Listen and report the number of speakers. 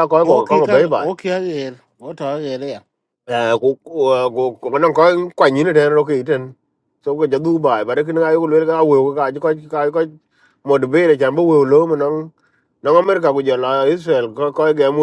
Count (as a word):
two